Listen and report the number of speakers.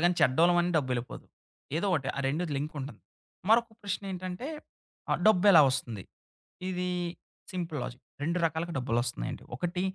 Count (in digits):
1